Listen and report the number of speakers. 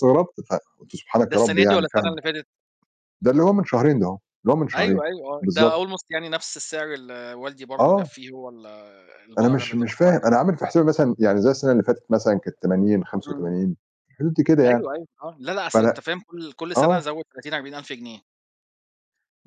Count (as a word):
two